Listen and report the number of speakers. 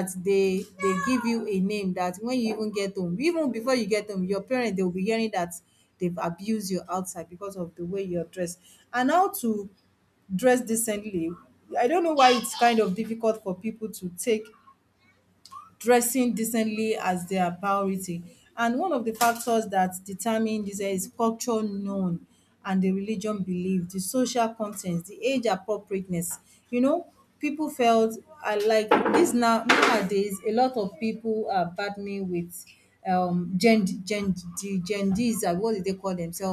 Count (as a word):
one